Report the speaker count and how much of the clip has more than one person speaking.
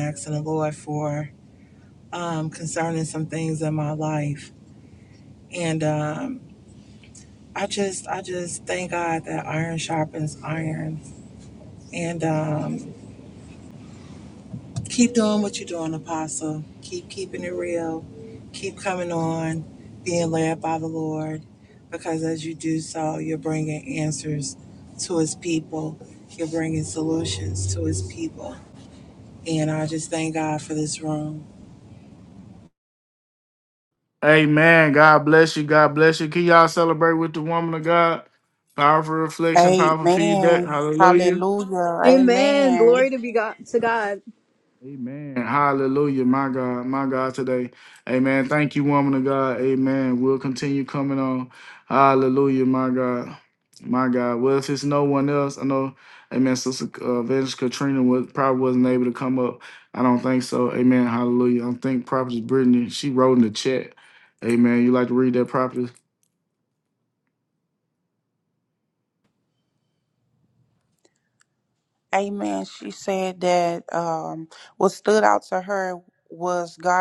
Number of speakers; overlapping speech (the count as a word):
four, about 3%